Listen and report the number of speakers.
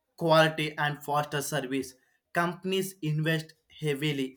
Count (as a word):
one